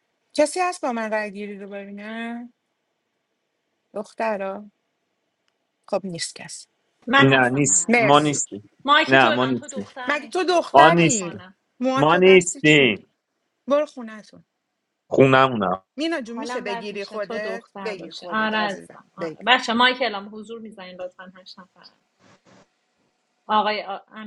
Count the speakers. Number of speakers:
three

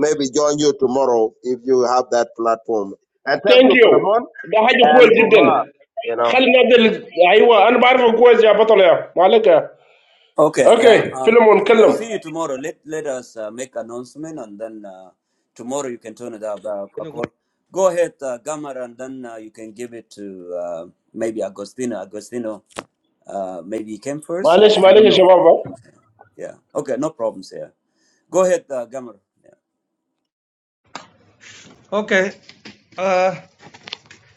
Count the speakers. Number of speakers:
four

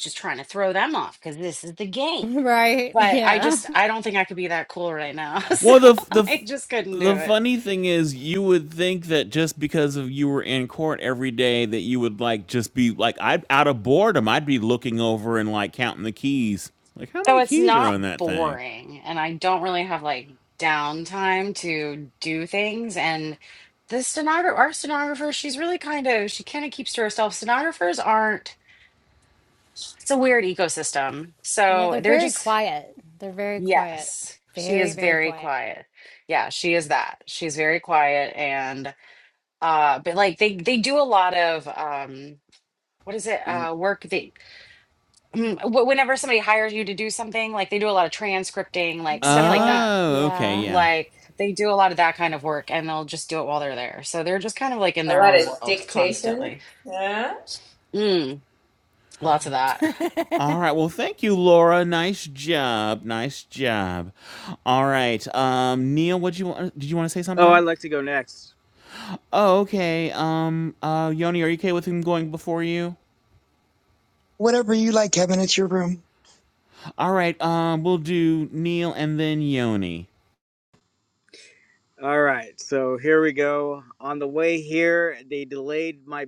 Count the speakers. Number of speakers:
six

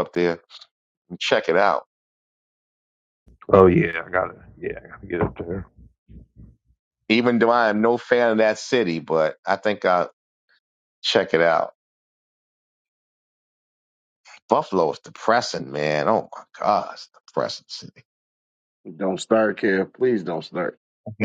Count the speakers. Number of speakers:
three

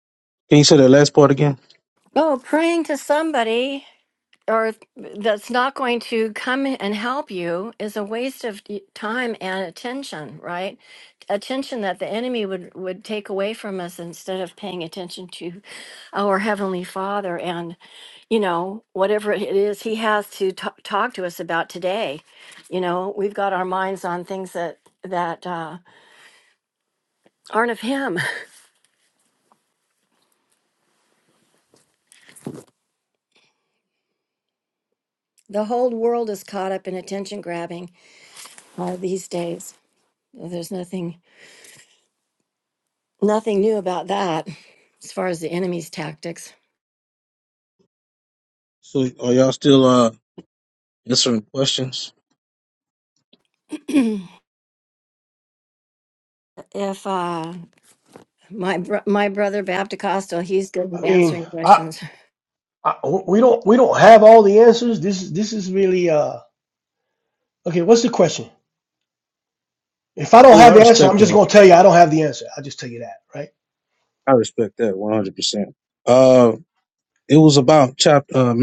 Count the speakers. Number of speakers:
three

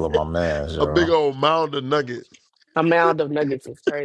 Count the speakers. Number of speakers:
three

